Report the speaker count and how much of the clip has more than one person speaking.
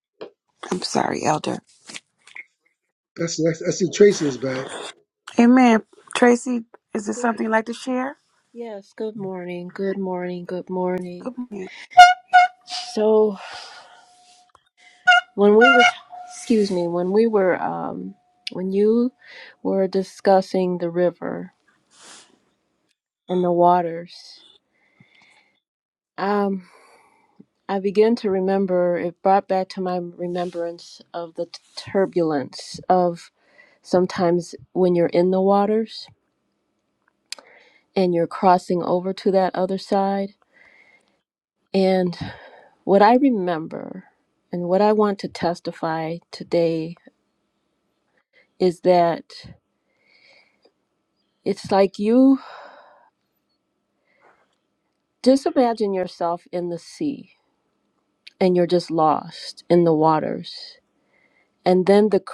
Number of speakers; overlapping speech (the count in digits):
3, under 1%